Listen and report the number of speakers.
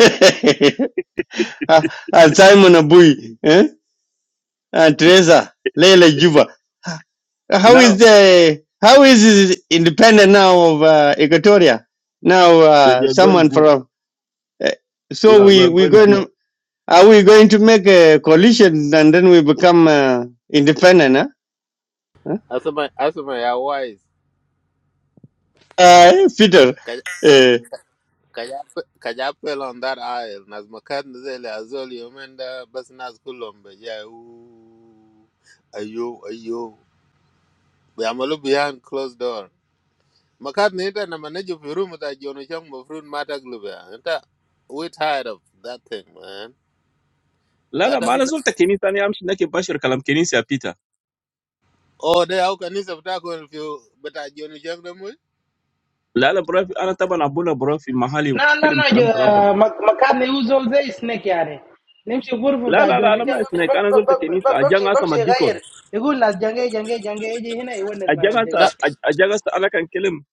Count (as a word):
four